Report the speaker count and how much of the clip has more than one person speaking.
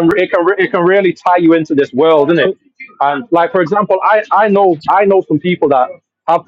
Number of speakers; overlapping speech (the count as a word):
one, no overlap